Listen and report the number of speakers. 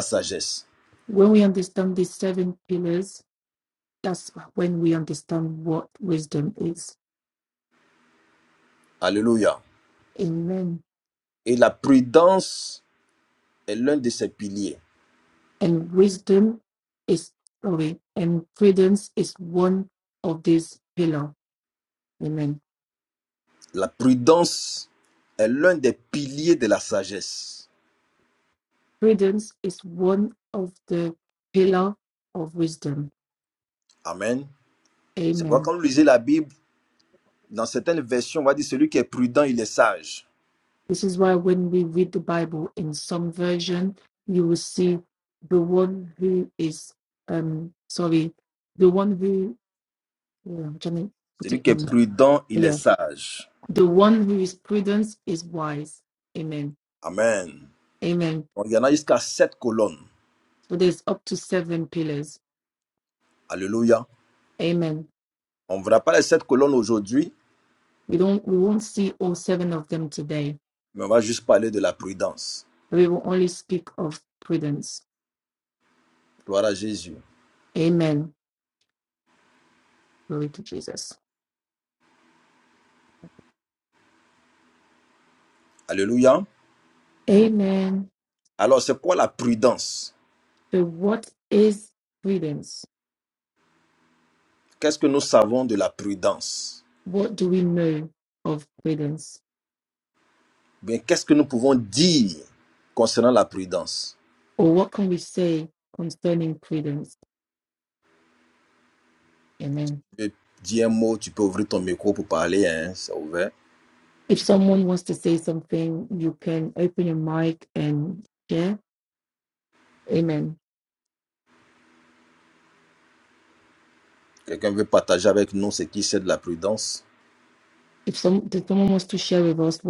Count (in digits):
2